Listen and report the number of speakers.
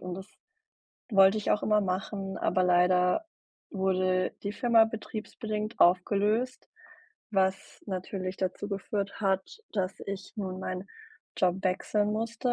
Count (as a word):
one